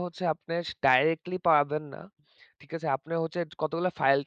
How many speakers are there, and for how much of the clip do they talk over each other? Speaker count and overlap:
1, no overlap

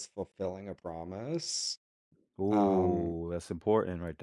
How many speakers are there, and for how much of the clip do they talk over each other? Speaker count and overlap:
2, about 15%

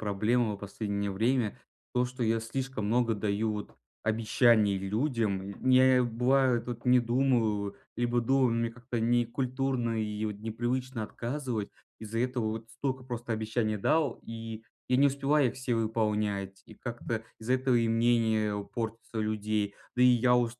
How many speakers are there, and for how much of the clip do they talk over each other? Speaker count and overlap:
1, no overlap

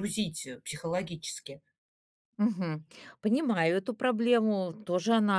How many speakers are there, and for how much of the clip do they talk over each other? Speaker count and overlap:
2, no overlap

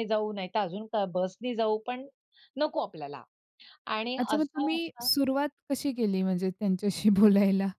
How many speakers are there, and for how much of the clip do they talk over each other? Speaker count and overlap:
2, about 12%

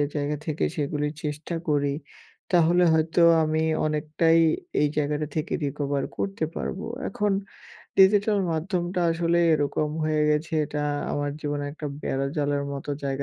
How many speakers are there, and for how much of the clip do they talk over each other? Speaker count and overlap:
1, no overlap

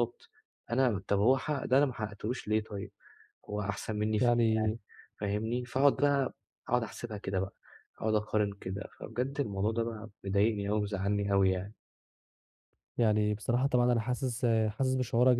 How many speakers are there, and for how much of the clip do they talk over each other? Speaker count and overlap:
2, about 3%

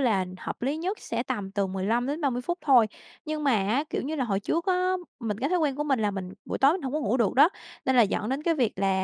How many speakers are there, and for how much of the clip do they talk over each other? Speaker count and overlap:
1, no overlap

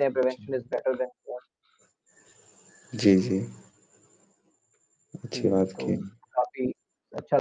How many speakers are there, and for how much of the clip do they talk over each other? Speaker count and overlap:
2, about 8%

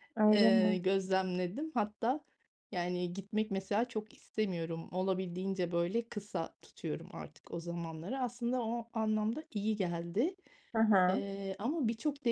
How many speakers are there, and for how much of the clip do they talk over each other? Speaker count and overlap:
2, about 5%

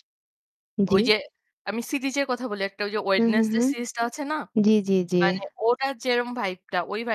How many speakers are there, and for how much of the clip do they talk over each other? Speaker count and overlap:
2, about 11%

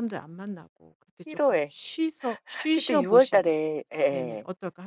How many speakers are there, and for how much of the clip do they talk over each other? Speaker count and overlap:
2, about 32%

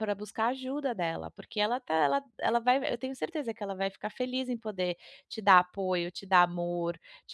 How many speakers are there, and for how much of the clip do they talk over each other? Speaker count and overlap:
1, no overlap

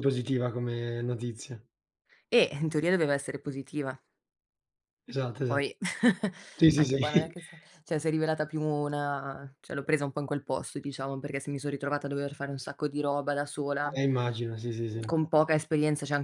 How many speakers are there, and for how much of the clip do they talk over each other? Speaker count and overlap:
2, about 6%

